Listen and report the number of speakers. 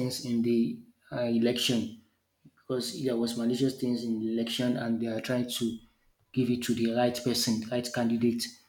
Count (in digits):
1